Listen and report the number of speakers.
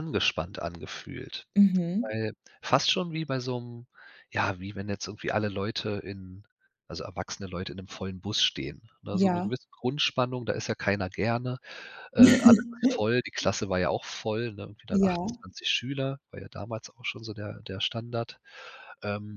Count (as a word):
two